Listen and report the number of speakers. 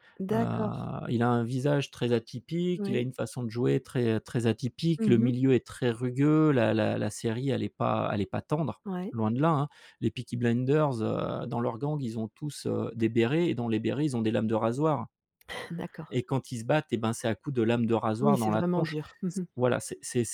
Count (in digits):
2